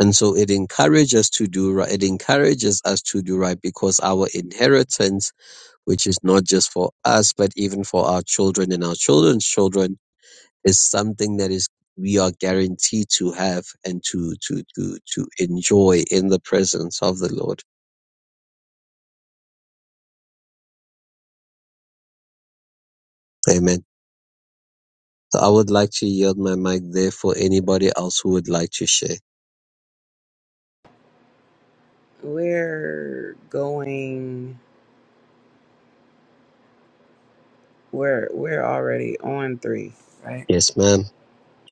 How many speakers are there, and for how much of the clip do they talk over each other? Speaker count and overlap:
2, no overlap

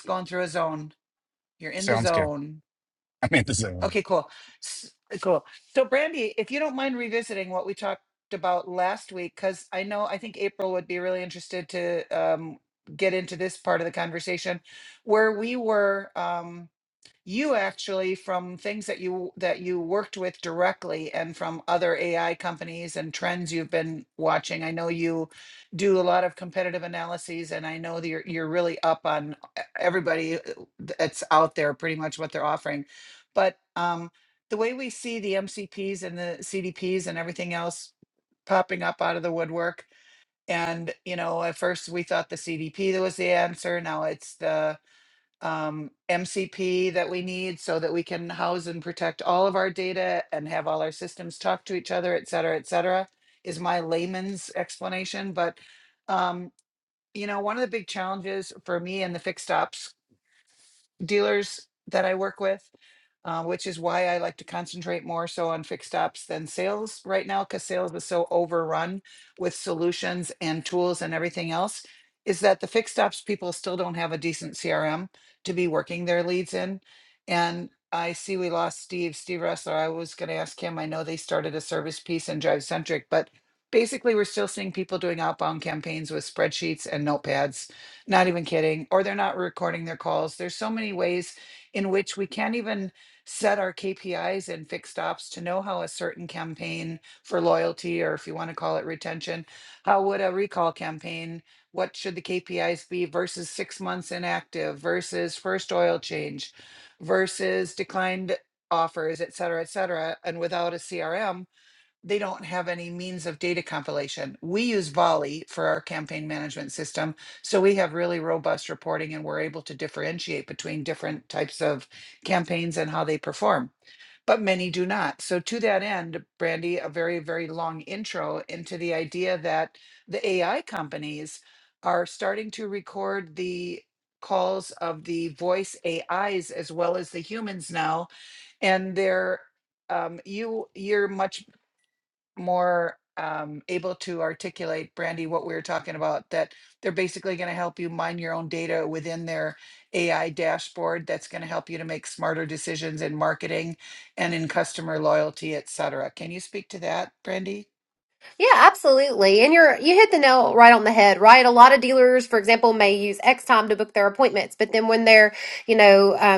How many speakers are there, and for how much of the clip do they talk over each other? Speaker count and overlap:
3, under 1%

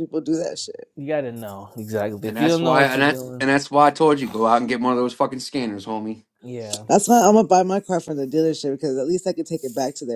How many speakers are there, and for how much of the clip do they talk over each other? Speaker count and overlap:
3, about 11%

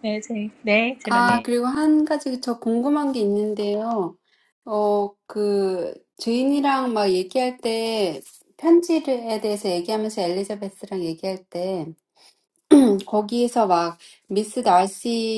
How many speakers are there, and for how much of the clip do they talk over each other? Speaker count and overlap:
2, about 3%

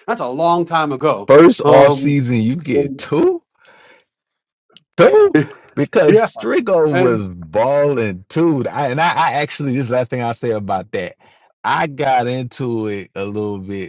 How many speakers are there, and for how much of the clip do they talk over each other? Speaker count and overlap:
2, about 7%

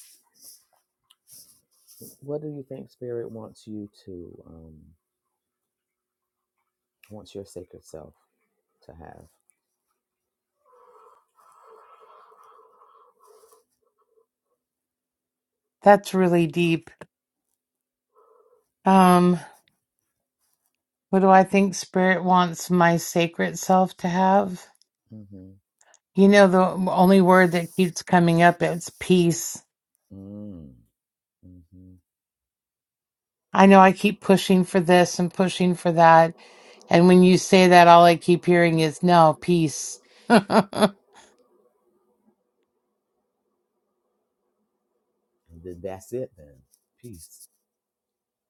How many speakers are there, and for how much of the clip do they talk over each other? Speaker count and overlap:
2, no overlap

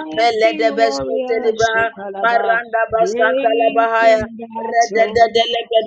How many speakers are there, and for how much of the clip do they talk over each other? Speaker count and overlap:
2, about 74%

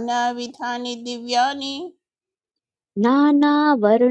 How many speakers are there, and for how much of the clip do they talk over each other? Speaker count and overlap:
2, no overlap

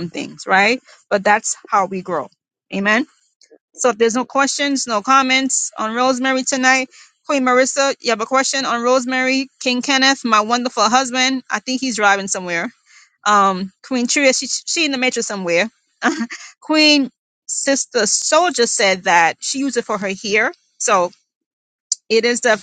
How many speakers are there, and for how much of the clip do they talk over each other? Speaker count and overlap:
1, no overlap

